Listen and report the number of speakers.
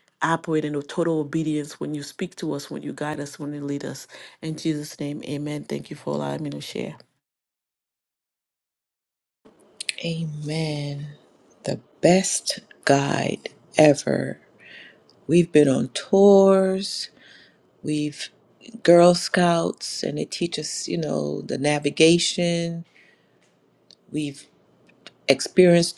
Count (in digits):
2